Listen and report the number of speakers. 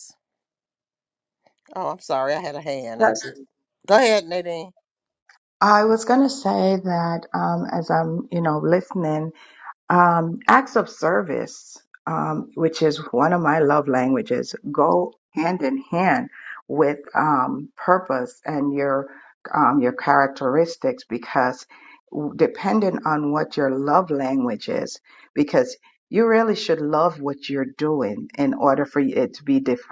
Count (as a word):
two